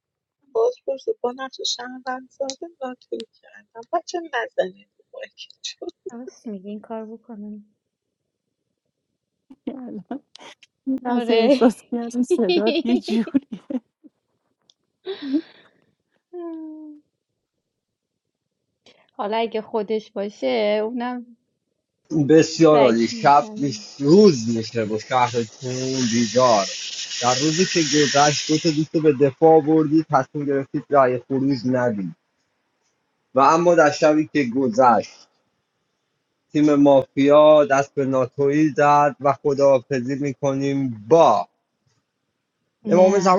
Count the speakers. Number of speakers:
4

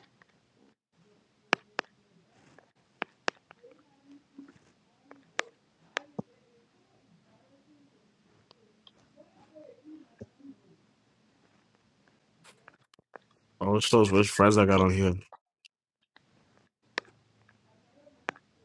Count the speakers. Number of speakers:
1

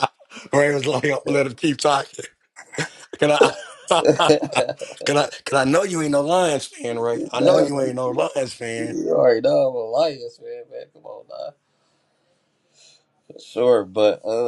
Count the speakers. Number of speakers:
2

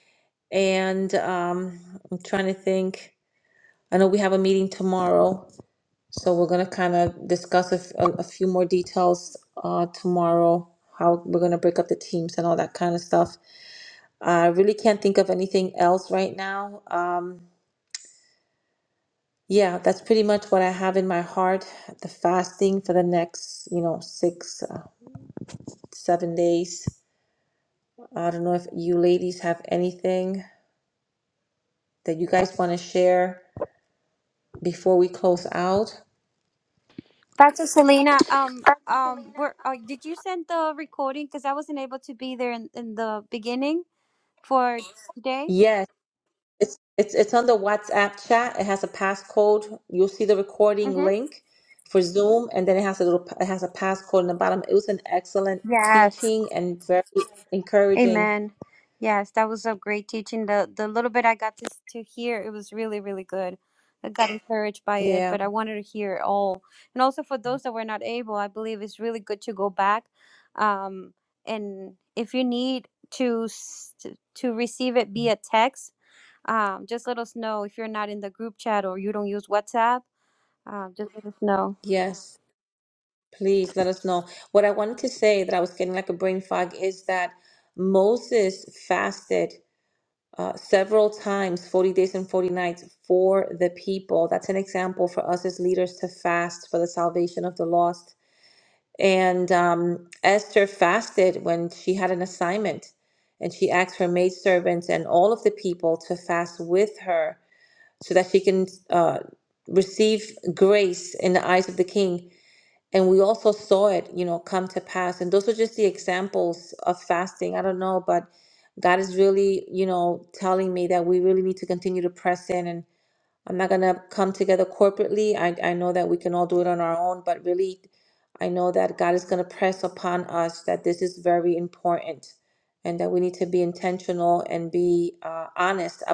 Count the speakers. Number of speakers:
2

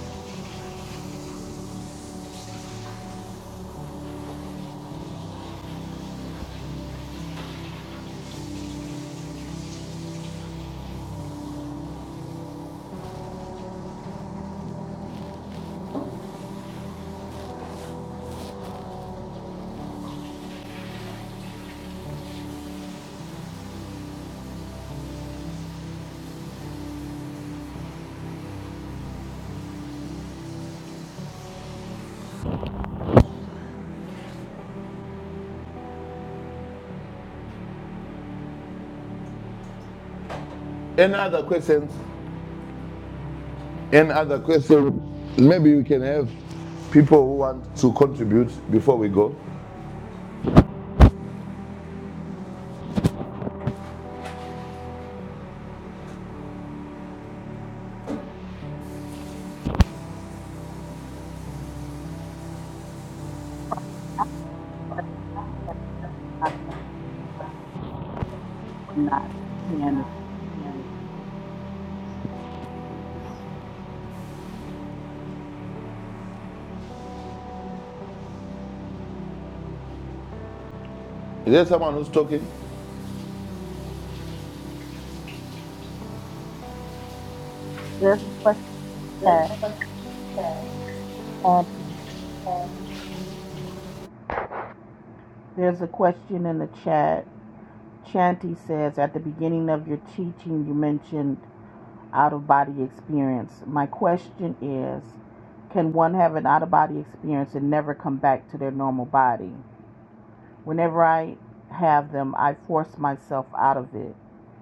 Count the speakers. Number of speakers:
2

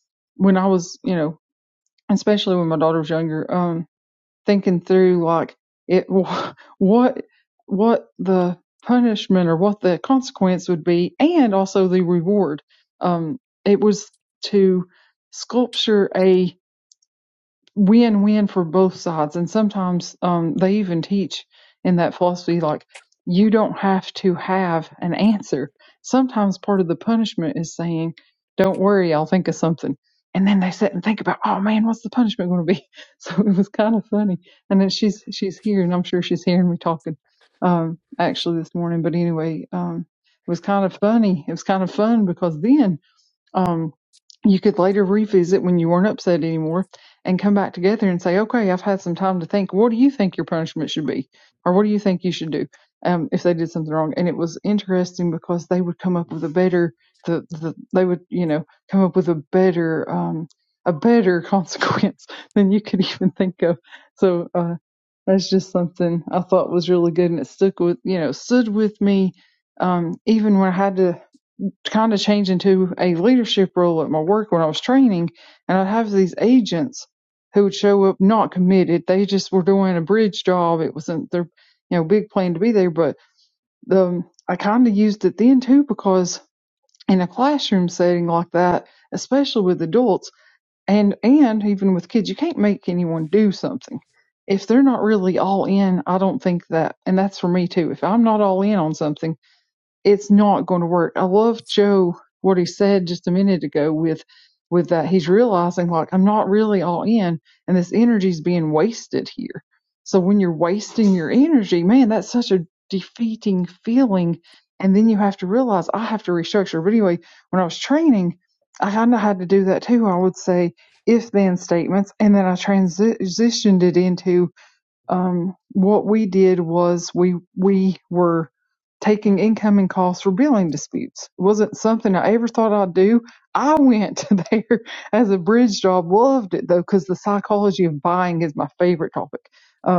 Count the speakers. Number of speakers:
1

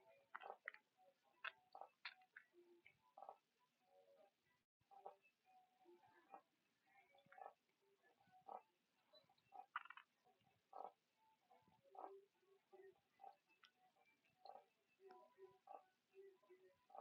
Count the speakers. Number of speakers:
0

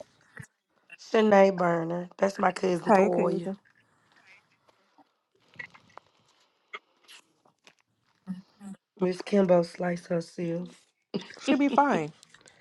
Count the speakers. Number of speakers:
2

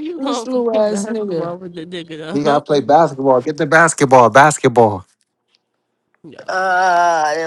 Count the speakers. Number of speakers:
3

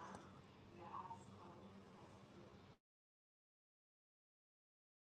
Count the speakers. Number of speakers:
0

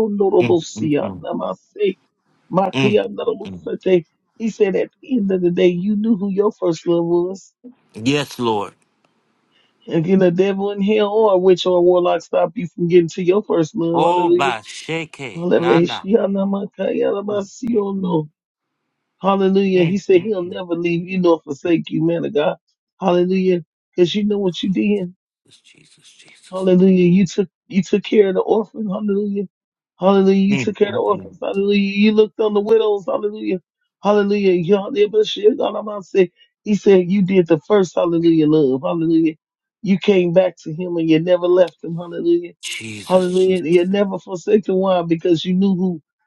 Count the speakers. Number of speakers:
2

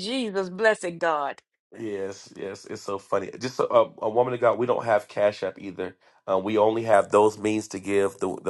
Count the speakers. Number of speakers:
2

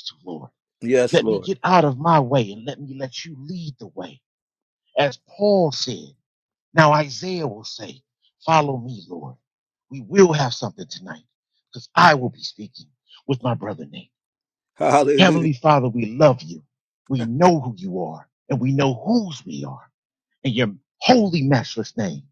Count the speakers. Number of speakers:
2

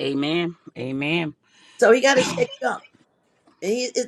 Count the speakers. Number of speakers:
2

